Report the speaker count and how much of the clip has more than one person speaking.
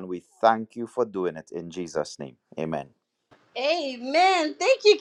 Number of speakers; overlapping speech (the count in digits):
2, no overlap